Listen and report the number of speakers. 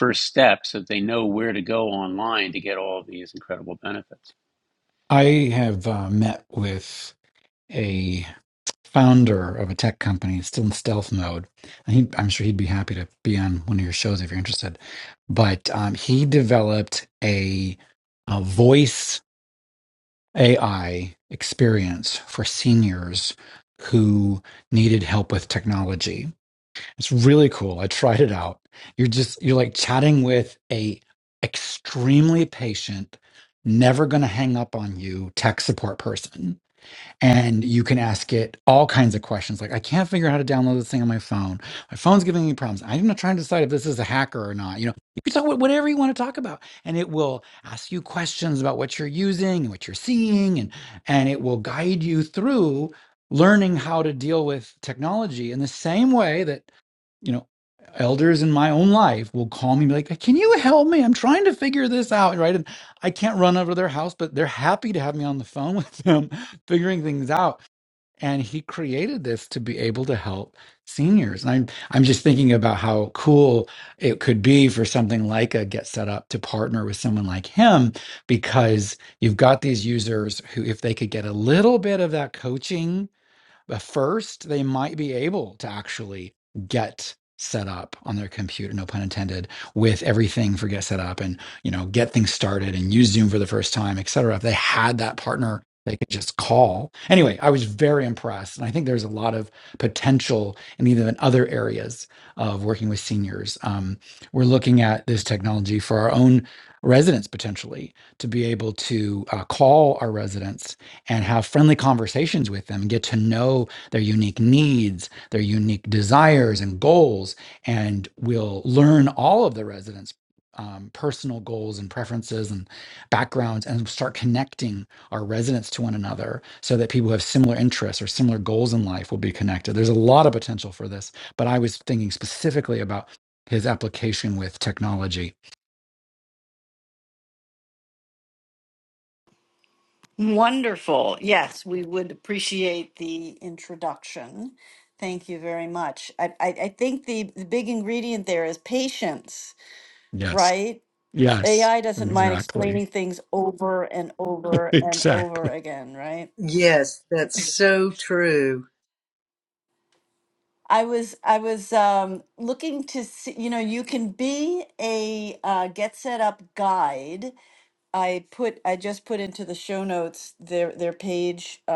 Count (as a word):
four